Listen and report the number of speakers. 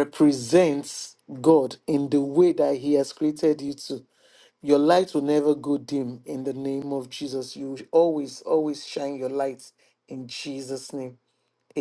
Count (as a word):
one